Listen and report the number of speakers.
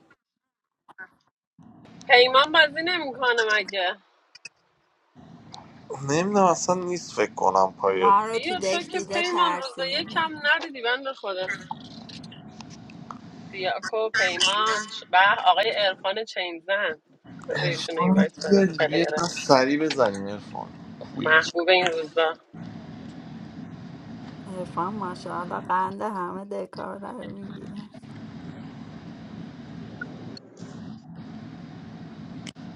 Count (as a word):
three